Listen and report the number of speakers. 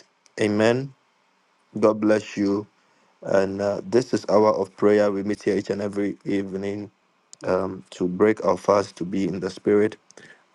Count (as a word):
one